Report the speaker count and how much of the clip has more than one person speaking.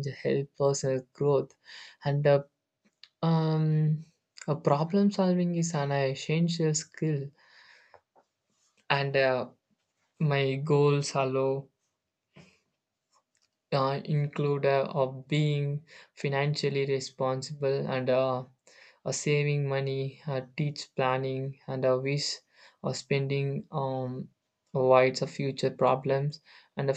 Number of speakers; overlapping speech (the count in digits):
1, no overlap